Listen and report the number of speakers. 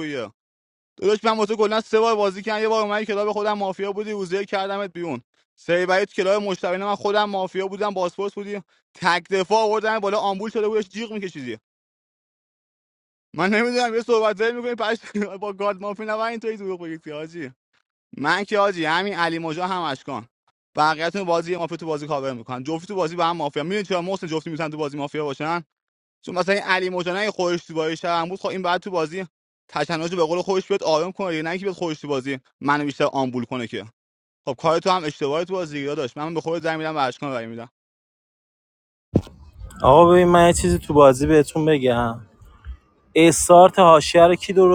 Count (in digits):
2